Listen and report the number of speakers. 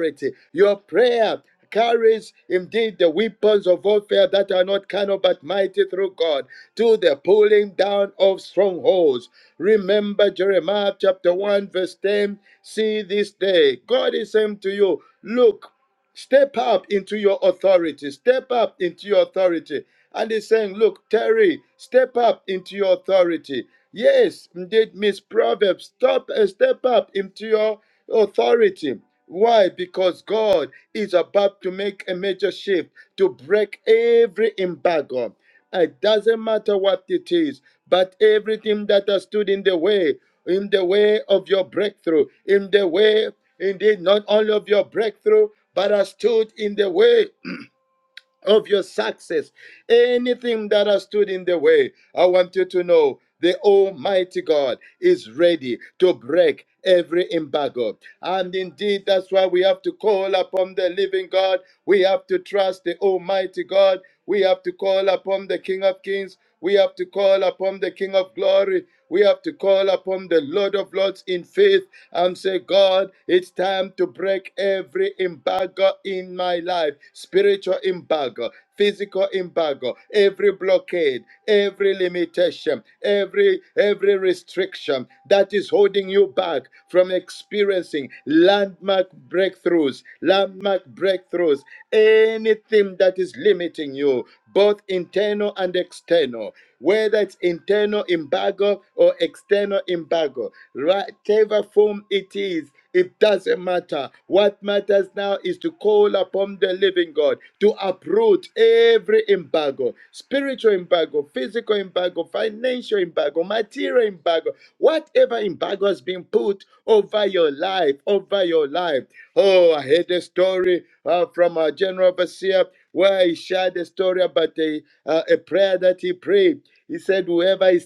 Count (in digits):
1